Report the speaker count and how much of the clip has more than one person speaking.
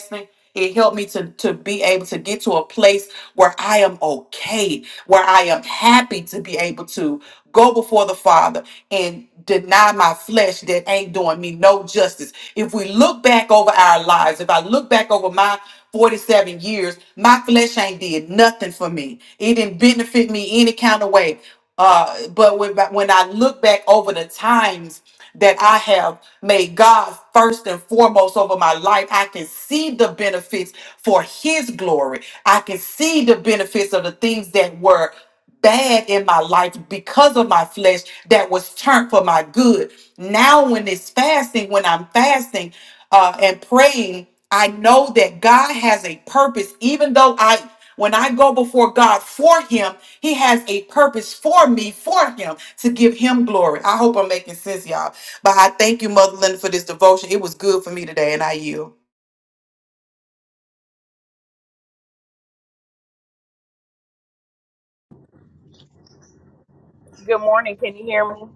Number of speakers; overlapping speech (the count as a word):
two, no overlap